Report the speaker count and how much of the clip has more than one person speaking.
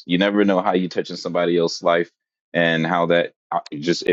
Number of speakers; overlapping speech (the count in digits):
1, no overlap